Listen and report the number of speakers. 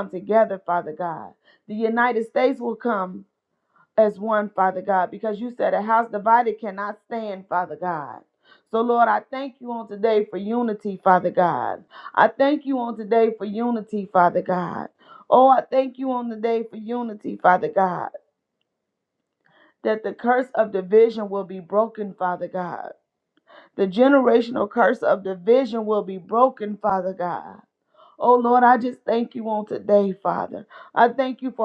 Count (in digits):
1